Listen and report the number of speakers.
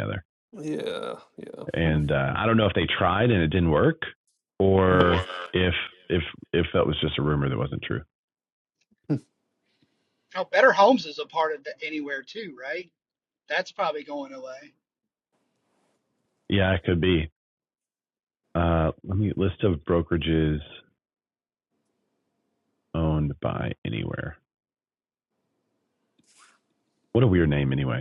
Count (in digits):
3